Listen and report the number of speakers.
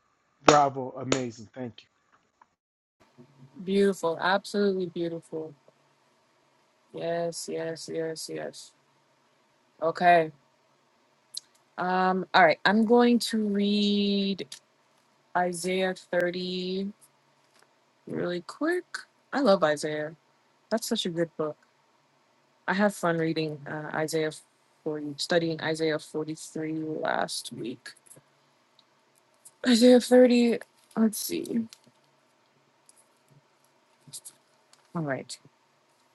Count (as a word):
two